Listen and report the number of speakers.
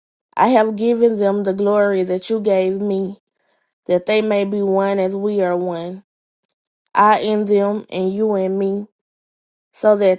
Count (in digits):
1